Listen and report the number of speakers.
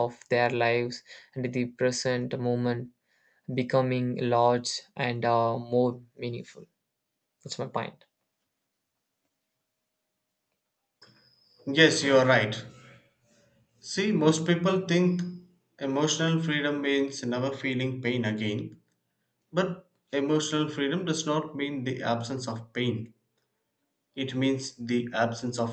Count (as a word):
two